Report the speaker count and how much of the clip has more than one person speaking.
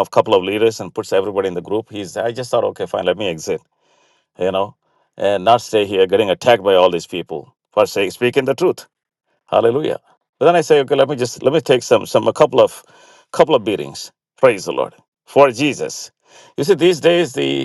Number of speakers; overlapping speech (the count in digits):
1, no overlap